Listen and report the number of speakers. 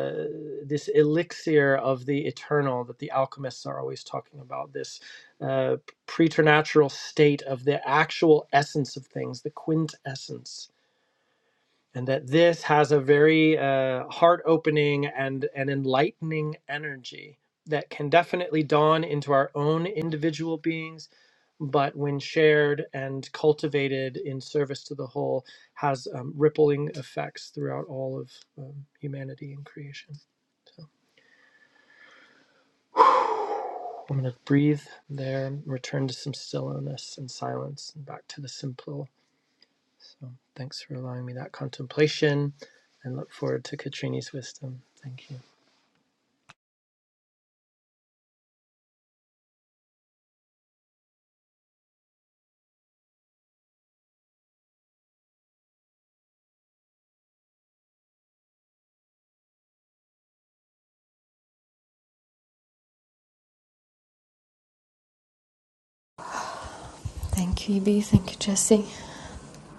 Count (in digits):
2